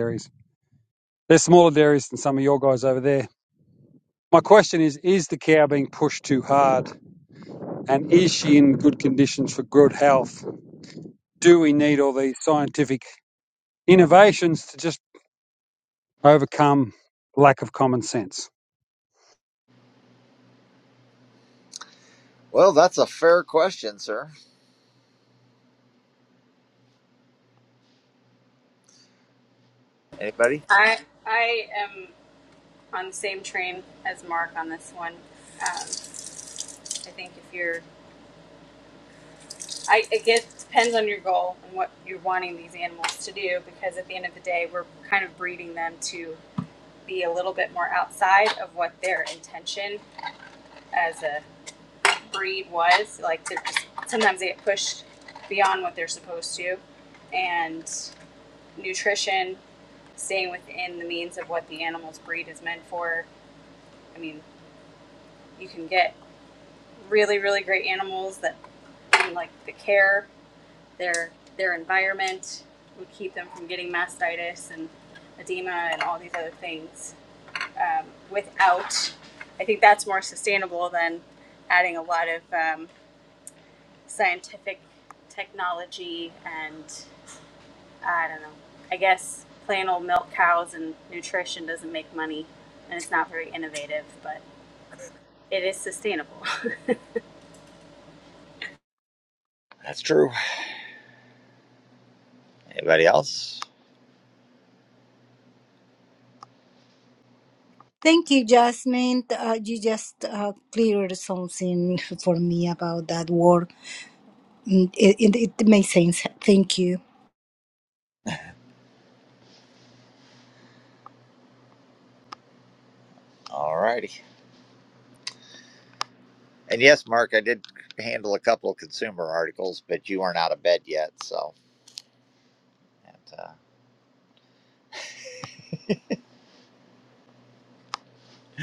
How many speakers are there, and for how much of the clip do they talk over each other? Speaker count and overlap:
4, no overlap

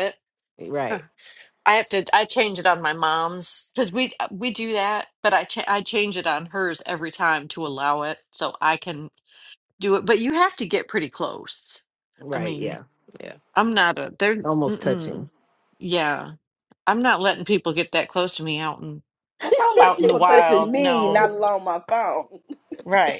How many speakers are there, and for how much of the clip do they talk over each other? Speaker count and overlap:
3, about 12%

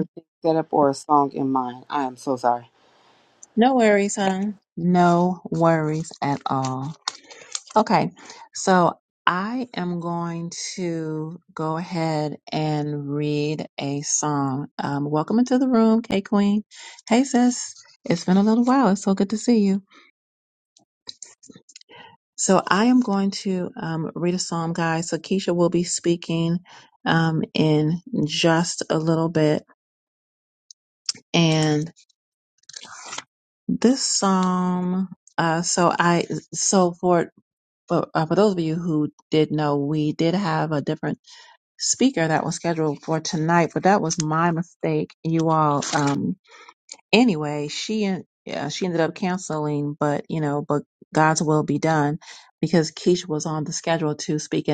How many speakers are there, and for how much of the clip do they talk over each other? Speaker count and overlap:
2, under 1%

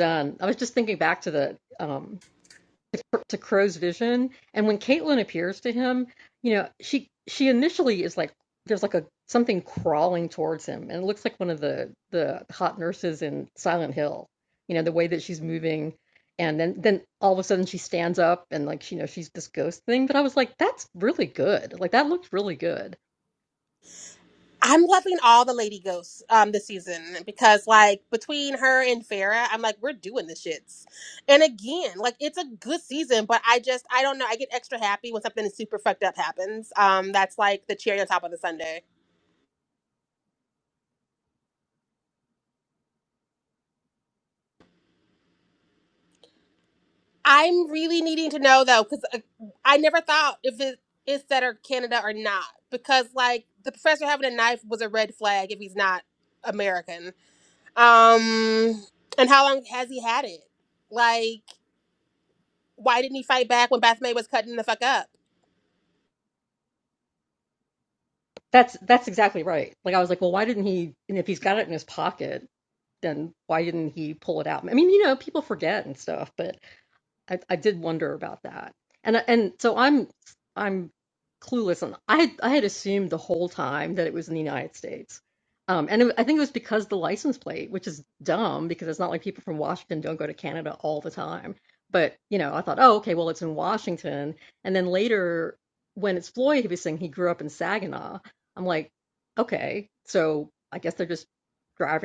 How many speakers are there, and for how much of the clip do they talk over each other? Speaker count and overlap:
2, no overlap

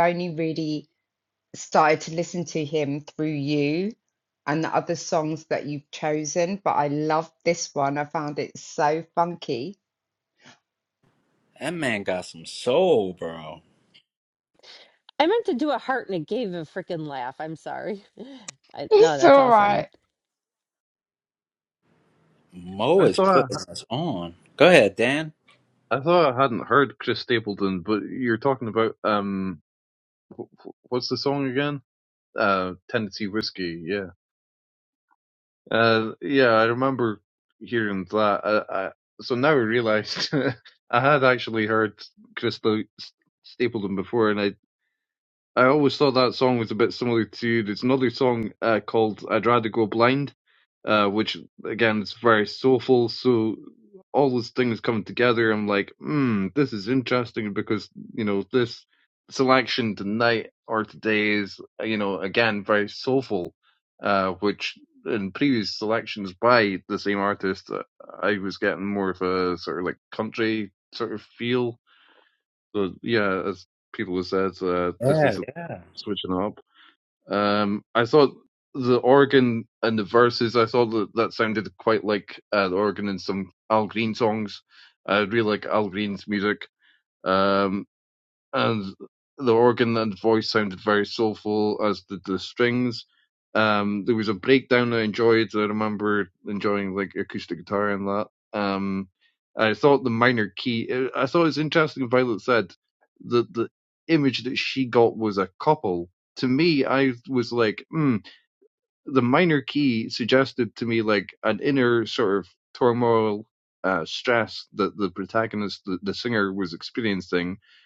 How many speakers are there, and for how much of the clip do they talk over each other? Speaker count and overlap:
4, about 2%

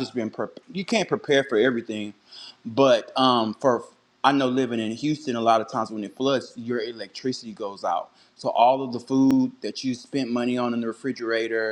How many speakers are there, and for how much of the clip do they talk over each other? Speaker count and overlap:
1, no overlap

